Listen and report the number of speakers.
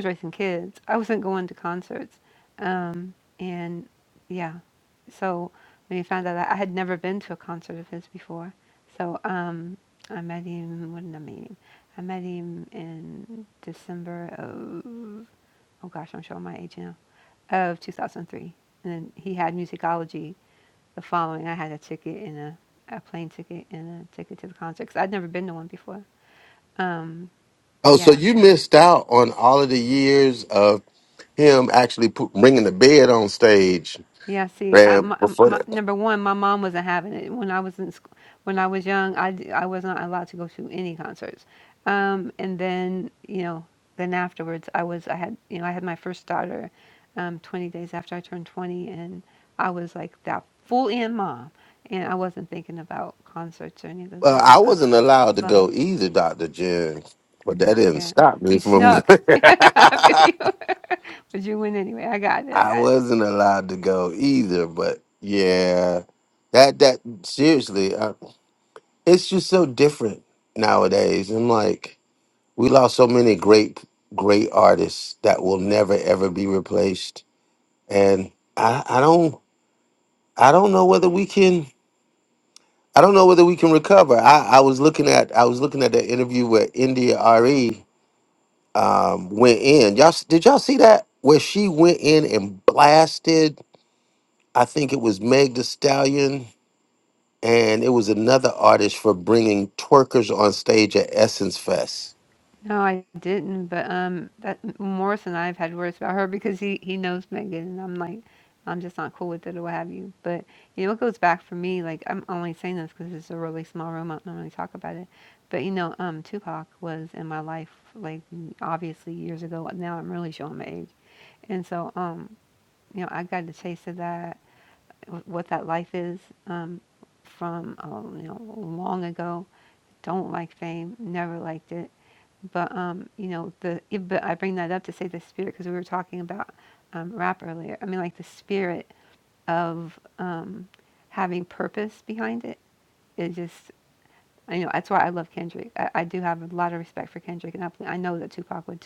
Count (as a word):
two